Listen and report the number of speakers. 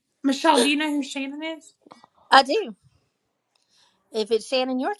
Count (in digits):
2